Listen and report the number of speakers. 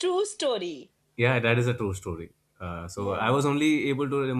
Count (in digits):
2